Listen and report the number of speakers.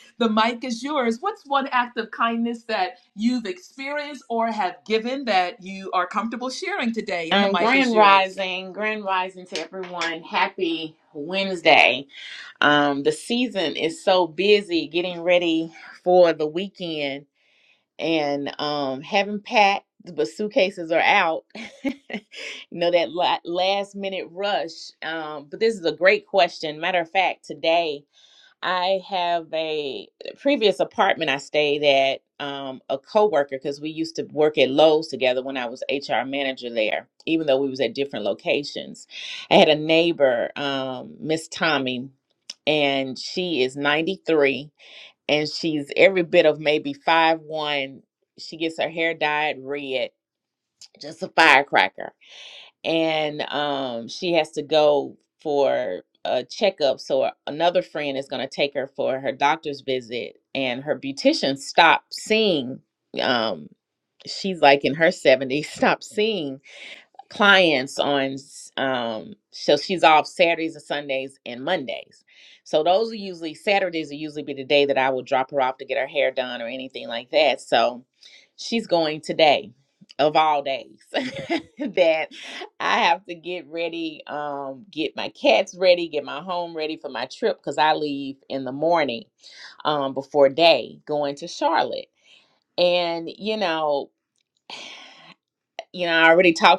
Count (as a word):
two